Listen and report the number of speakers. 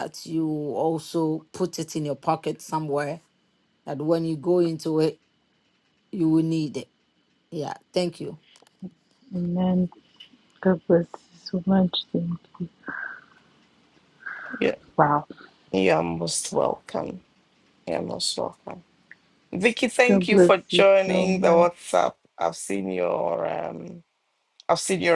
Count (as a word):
three